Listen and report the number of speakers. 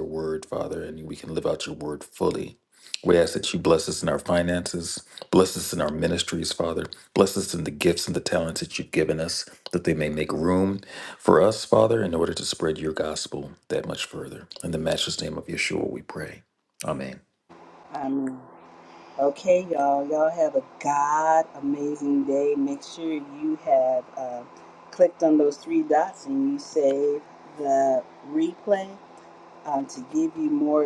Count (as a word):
two